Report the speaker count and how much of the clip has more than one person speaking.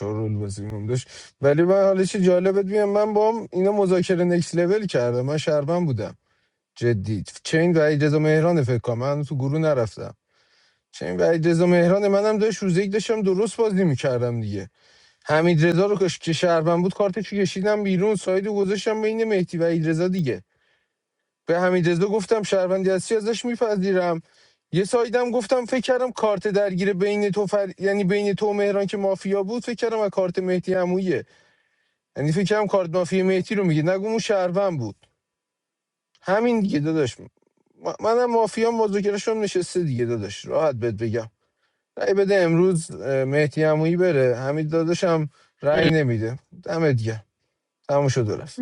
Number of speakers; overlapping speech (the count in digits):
1, no overlap